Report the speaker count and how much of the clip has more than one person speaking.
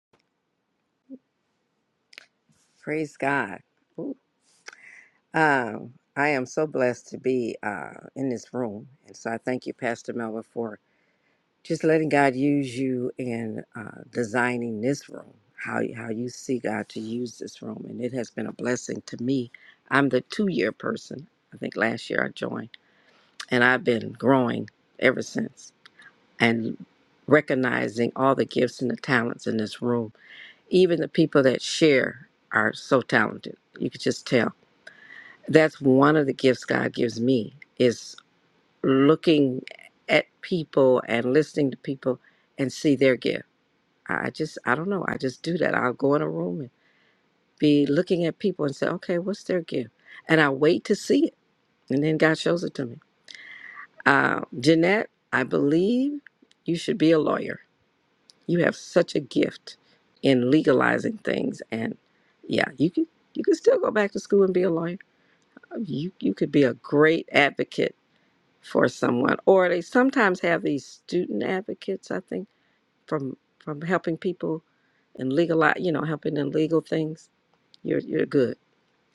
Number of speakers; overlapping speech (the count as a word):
one, no overlap